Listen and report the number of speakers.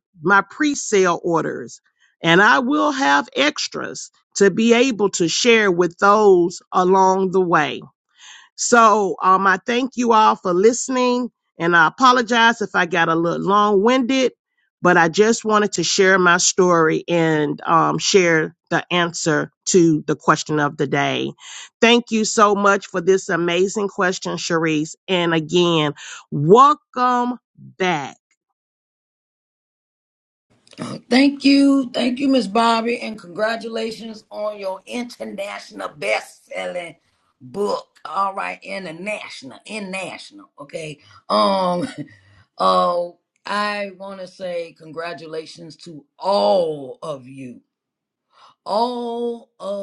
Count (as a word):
two